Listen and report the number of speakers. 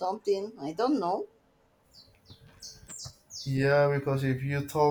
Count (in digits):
2